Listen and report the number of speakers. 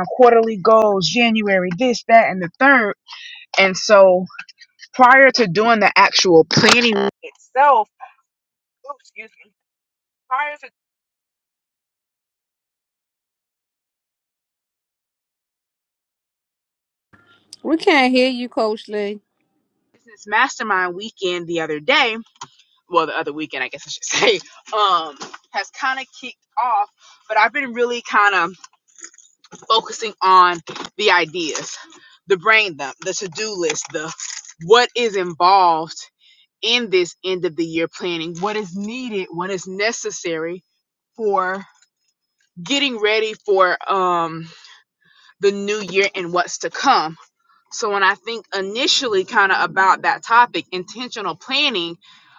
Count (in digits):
2